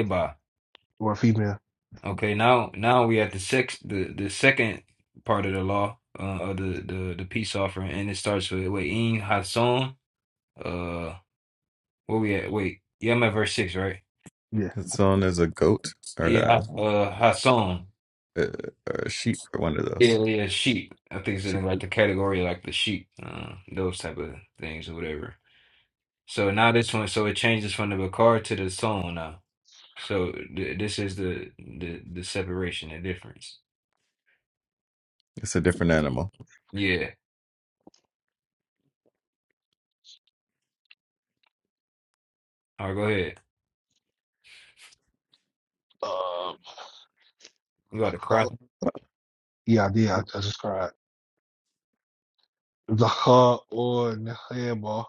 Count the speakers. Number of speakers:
3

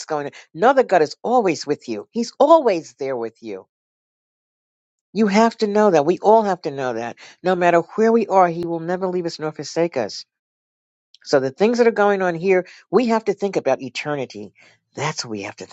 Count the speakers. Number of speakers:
1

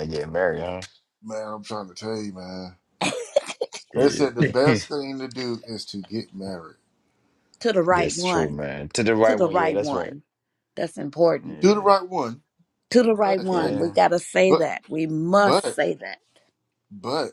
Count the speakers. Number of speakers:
3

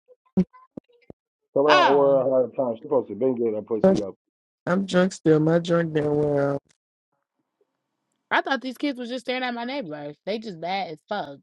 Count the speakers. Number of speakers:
3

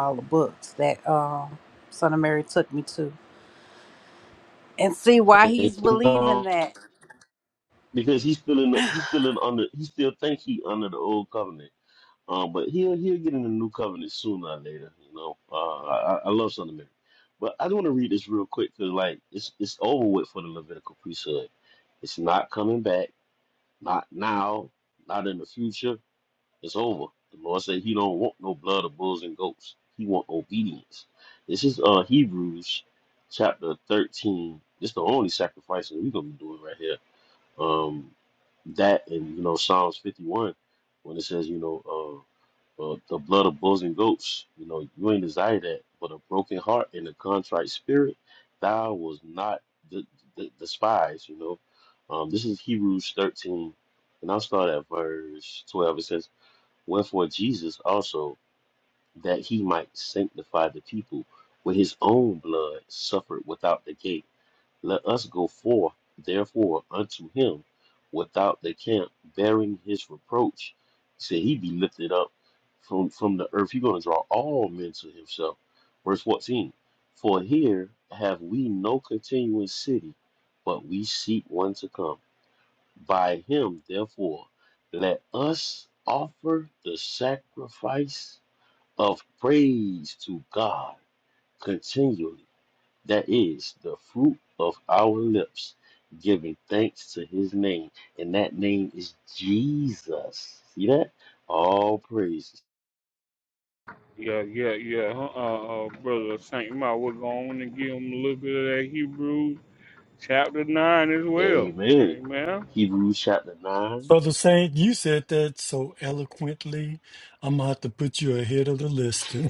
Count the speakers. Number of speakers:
4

